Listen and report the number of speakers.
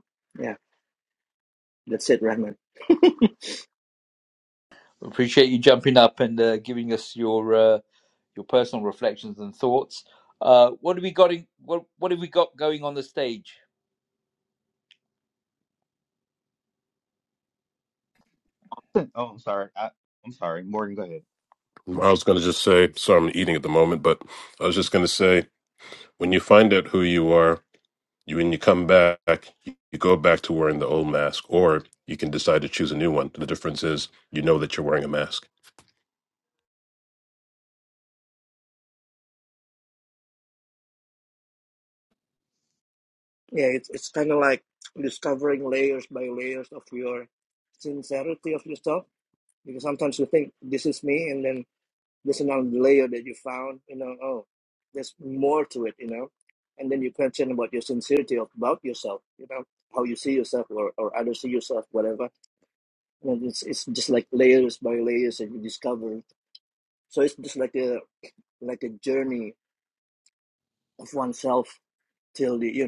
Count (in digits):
4